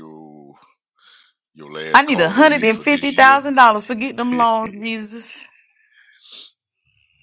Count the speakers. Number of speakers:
2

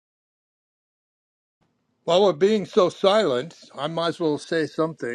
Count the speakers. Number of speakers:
1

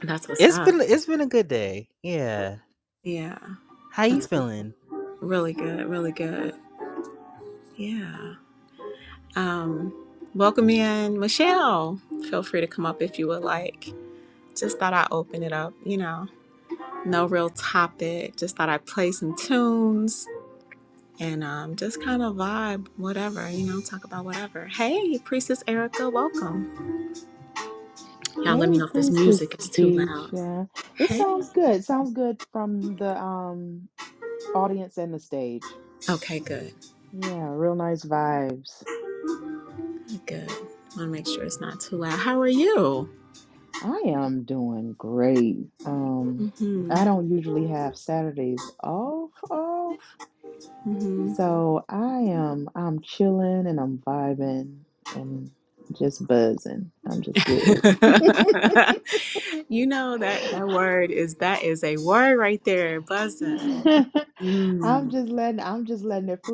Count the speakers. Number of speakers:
3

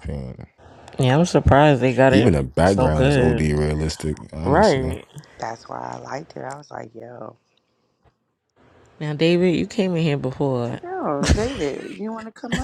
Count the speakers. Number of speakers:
3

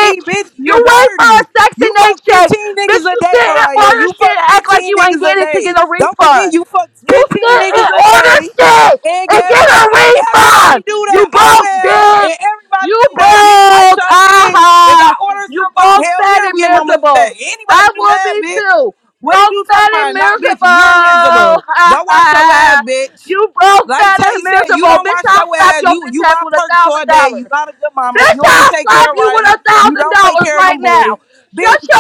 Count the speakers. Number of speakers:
2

